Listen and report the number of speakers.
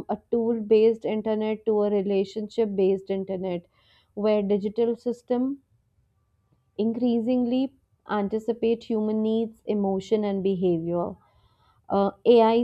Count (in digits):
1